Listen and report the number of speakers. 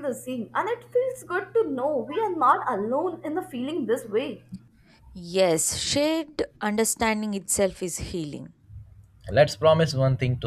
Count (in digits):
3